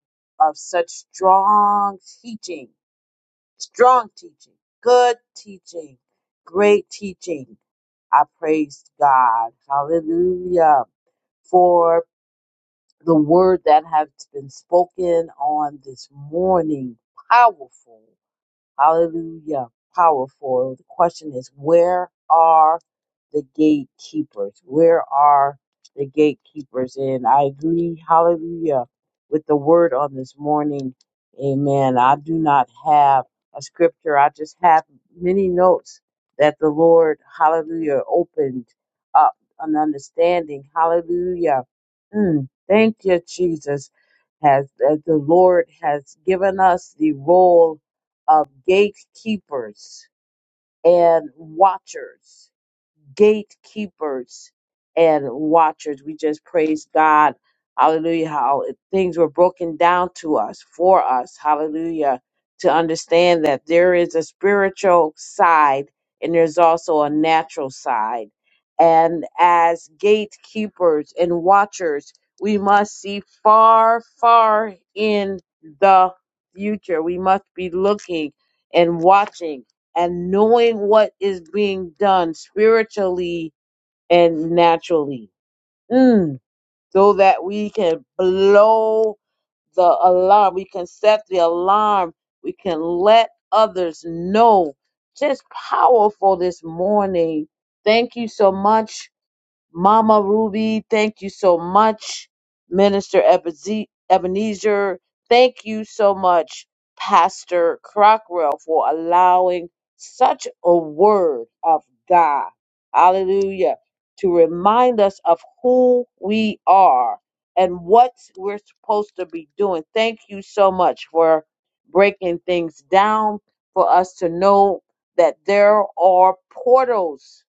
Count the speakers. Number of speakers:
1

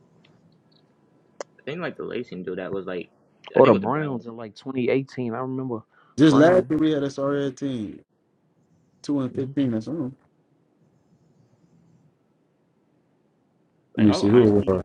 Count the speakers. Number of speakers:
3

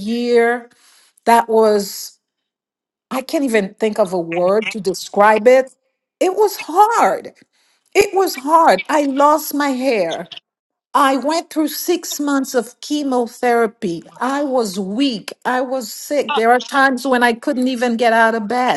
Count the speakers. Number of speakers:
1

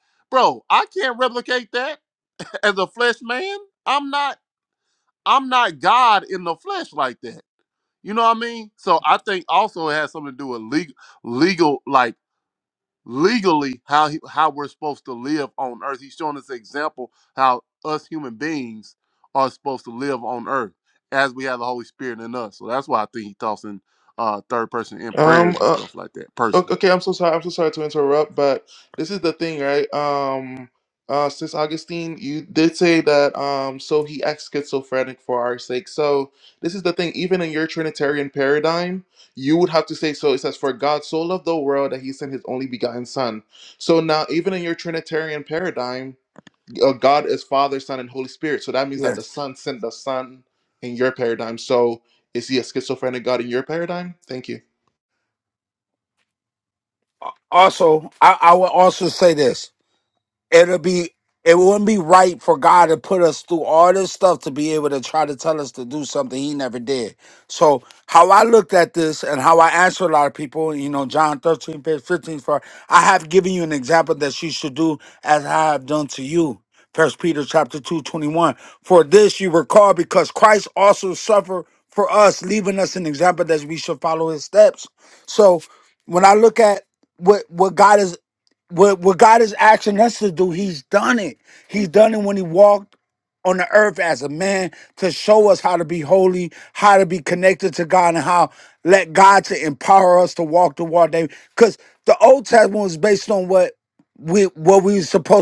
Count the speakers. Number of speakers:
3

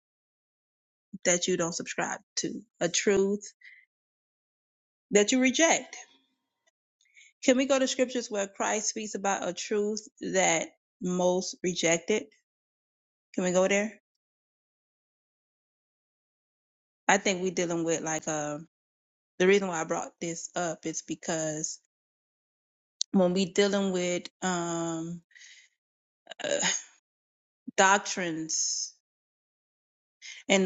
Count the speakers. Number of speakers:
1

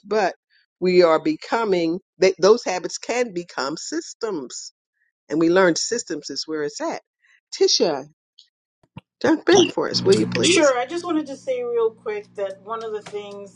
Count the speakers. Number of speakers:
2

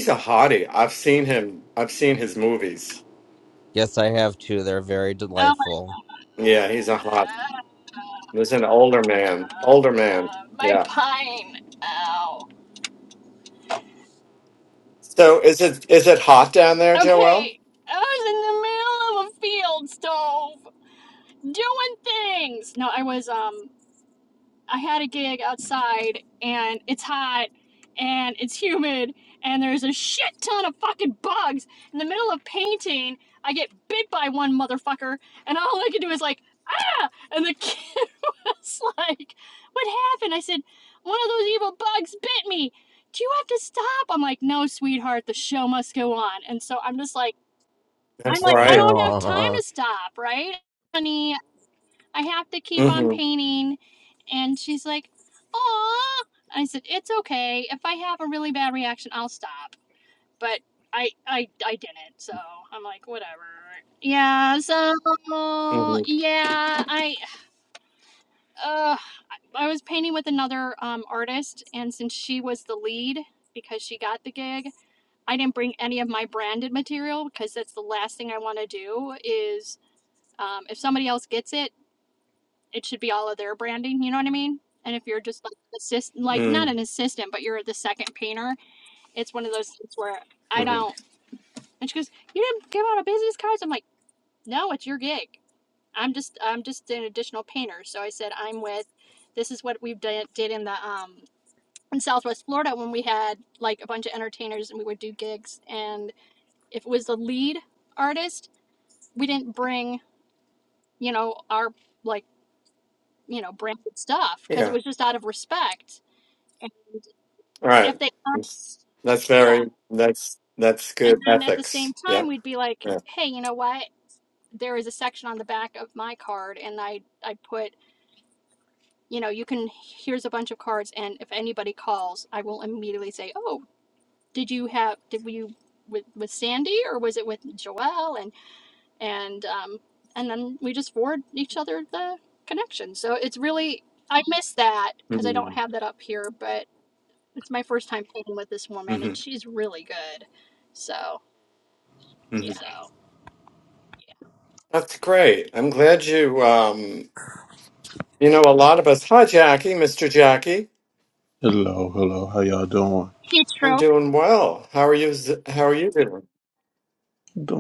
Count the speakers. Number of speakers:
4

